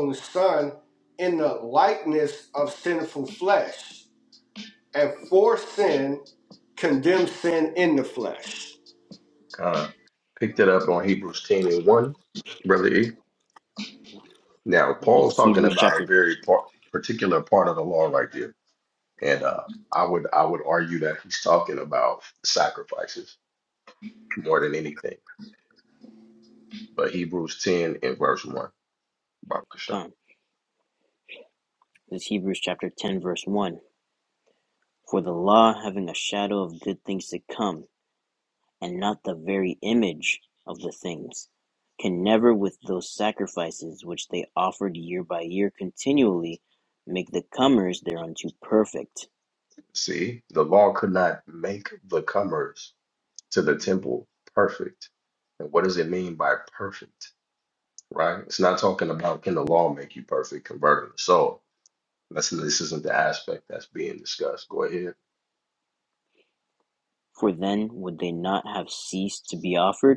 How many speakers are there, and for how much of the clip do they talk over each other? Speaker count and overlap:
3, about 2%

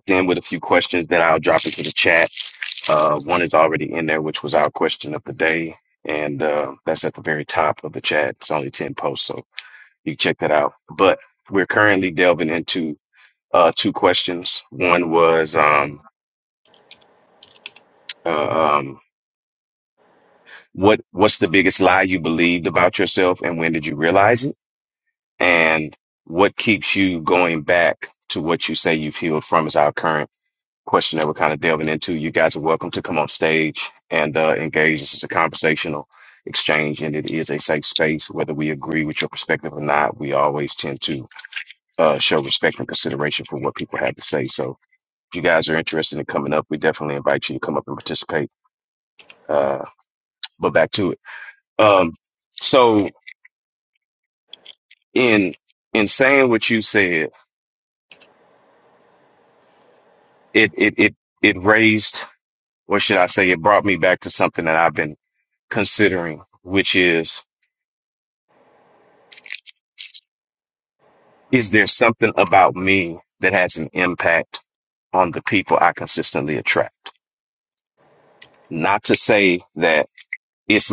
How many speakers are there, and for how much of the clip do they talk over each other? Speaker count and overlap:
1, no overlap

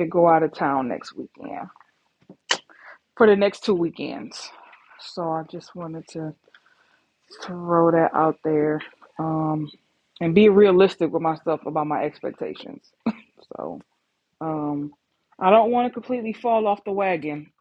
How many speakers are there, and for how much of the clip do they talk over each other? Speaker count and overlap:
1, no overlap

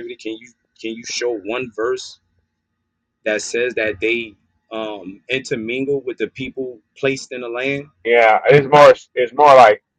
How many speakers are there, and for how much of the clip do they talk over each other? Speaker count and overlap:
2, no overlap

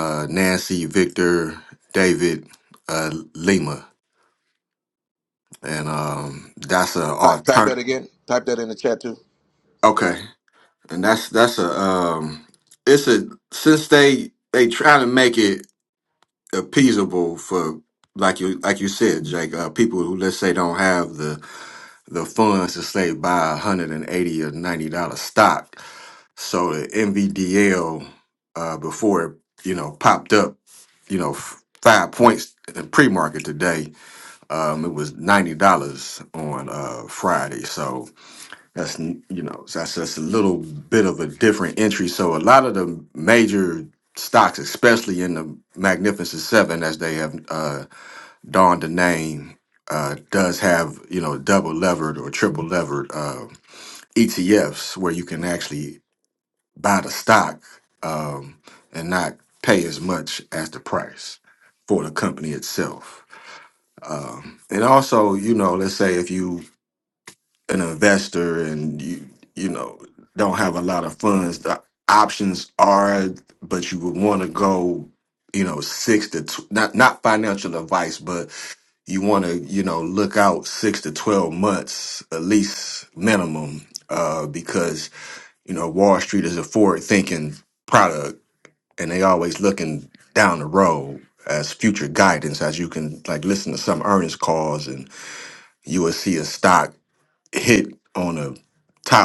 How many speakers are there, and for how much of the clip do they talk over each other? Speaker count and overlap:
2, about 1%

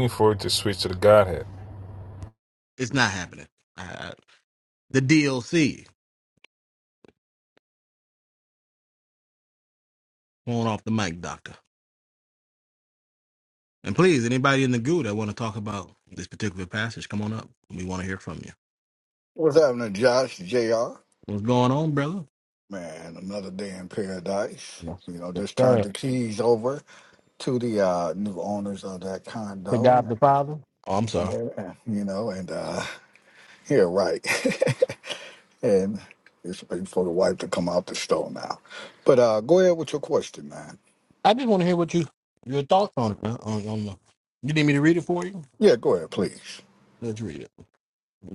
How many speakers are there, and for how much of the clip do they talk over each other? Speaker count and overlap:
3, about 2%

